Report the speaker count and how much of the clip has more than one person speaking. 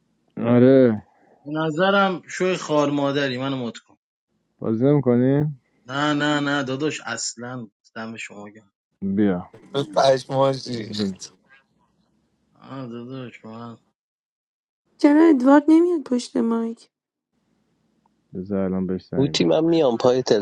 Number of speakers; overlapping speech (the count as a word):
five, about 1%